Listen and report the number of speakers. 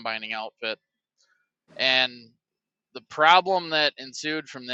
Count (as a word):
one